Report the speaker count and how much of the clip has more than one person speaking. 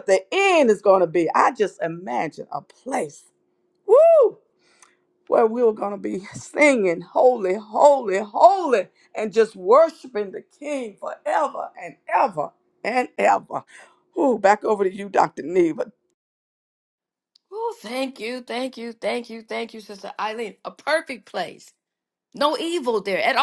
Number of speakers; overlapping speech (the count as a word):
two, no overlap